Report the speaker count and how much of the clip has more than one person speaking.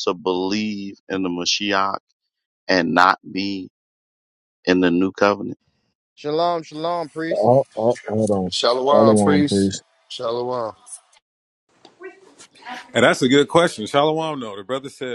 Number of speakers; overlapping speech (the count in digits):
5, about 5%